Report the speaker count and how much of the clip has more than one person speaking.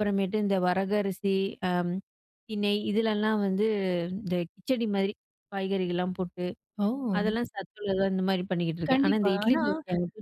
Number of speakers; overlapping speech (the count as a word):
two, about 10%